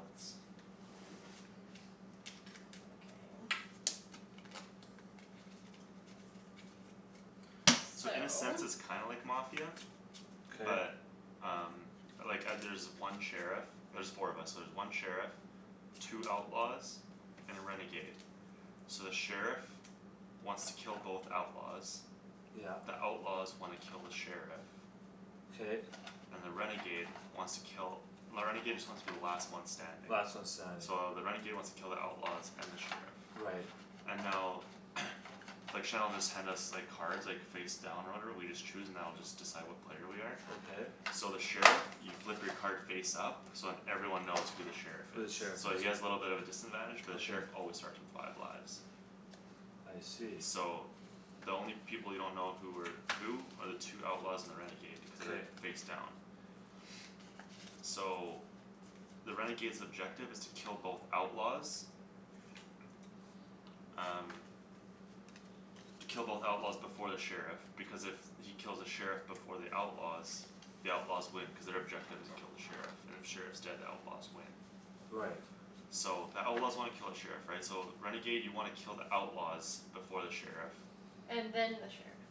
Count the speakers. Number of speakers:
3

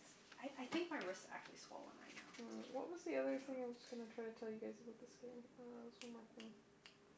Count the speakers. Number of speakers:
2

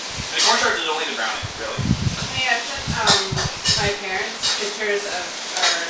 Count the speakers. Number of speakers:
2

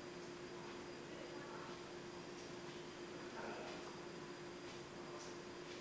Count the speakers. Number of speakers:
0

